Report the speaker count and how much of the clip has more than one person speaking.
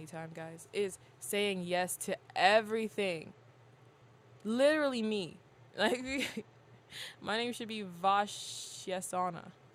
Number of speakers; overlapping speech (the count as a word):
one, no overlap